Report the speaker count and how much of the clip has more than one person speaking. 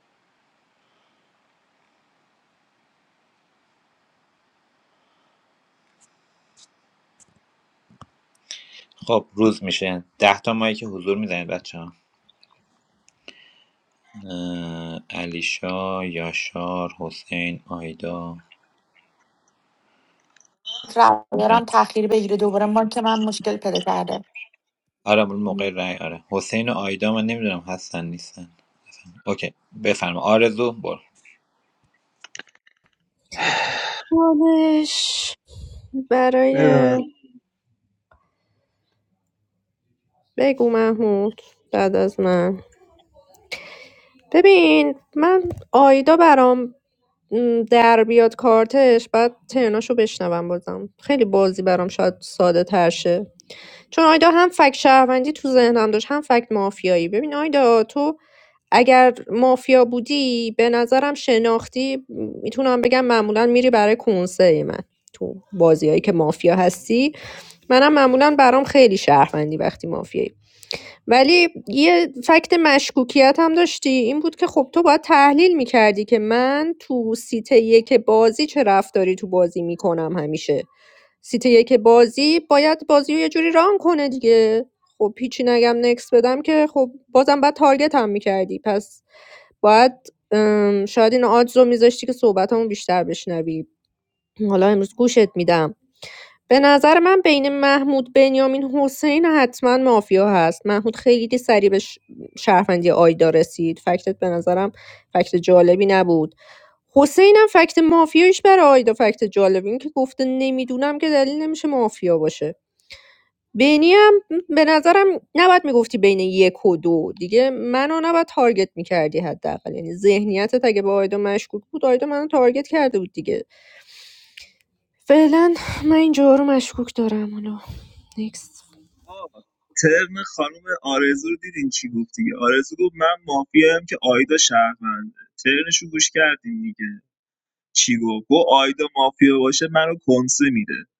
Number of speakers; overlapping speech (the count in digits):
4, under 1%